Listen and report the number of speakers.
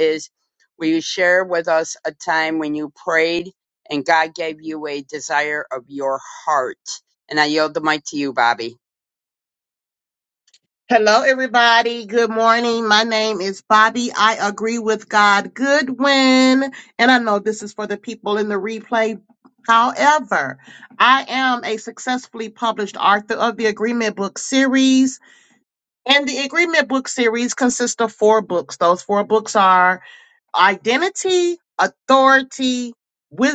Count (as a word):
two